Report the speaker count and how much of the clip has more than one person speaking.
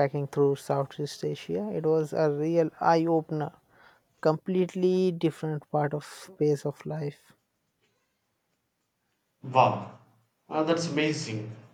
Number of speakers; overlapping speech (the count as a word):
two, no overlap